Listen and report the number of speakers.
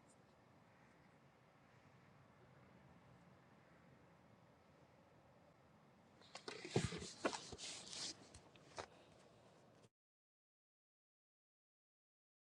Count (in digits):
0